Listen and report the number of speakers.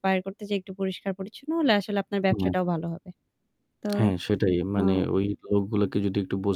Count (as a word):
two